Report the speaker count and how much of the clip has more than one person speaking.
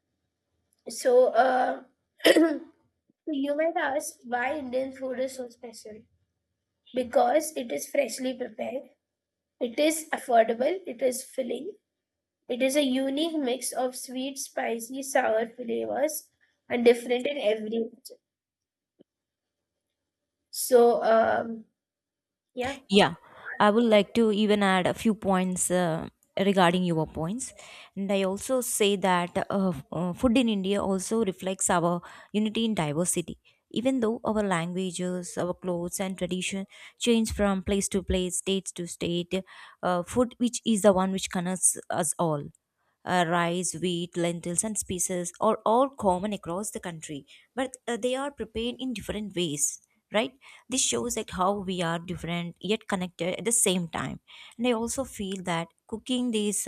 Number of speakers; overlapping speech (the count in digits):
2, no overlap